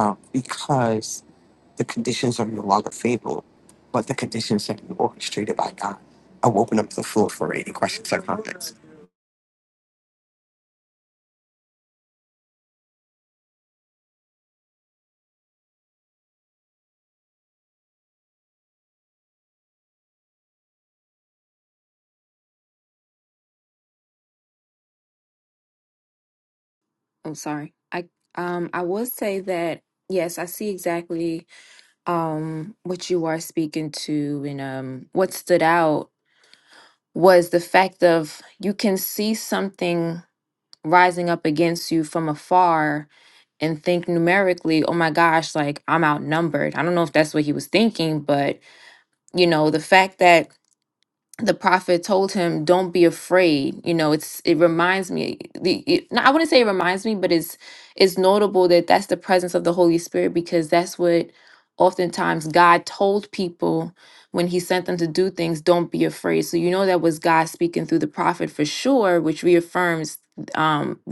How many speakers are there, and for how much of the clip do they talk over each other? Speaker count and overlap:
2, no overlap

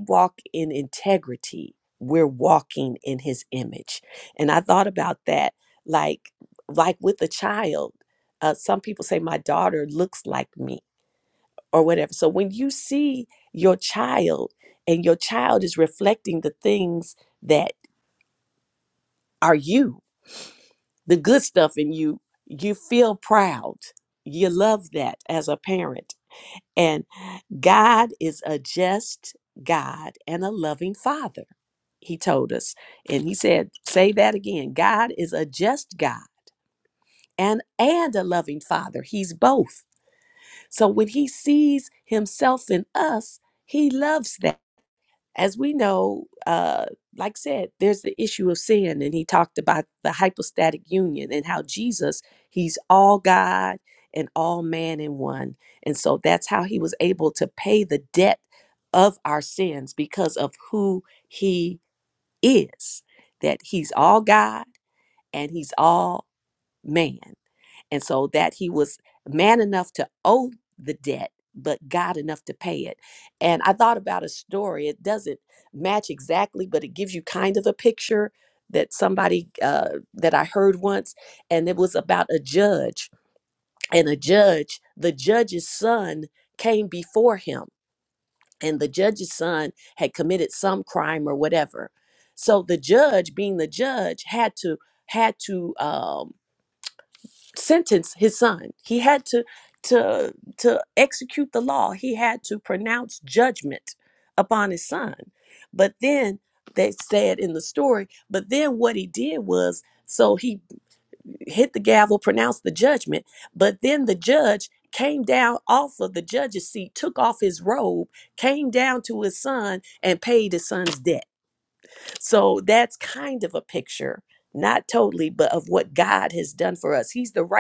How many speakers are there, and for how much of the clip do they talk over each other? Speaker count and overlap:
1, no overlap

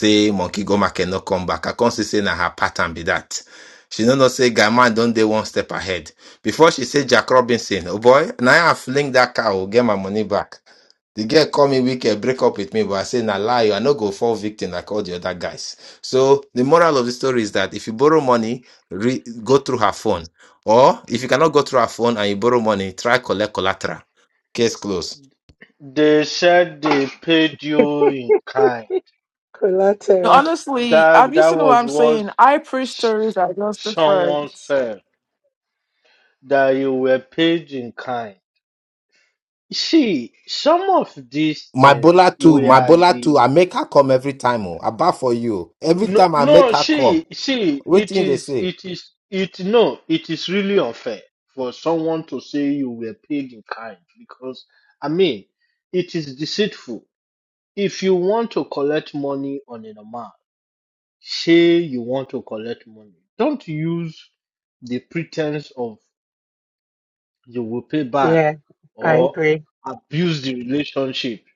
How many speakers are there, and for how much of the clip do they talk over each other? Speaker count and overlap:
4, about 10%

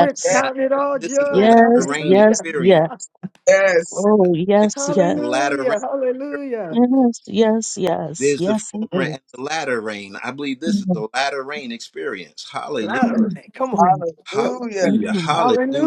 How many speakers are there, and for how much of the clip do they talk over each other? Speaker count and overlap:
4, about 40%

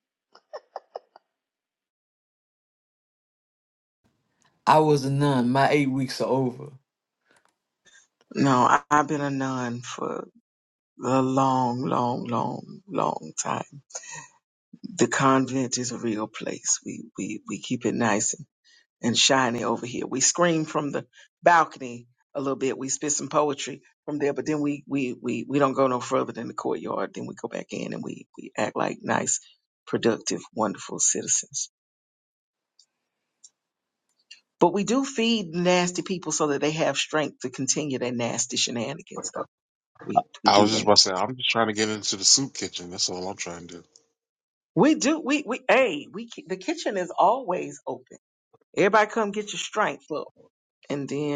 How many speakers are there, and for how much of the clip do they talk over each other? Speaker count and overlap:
3, about 1%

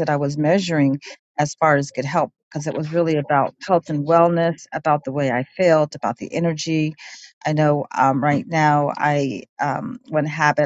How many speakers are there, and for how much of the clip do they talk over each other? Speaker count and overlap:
1, no overlap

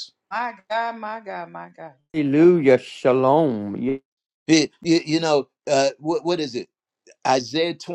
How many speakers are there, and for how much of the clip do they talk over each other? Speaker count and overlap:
3, no overlap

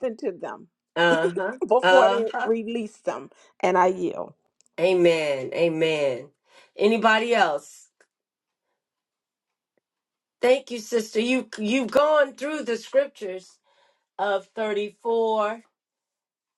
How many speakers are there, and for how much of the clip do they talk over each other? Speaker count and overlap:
2, about 5%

